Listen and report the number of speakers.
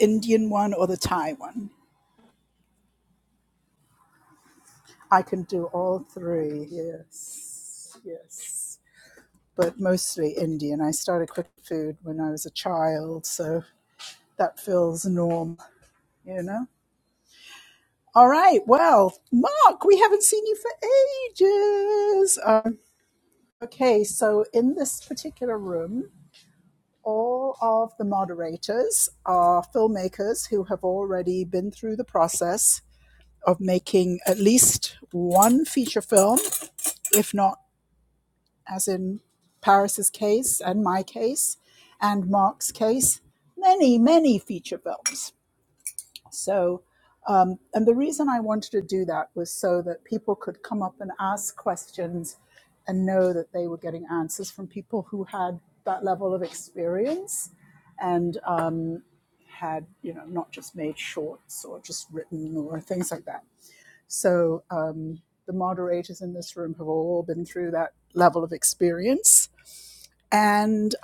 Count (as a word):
one